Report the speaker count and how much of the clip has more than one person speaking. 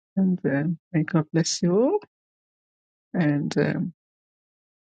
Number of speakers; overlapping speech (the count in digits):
1, no overlap